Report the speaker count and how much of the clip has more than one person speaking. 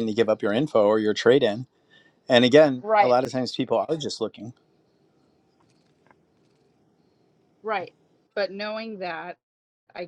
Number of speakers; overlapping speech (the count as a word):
two, about 3%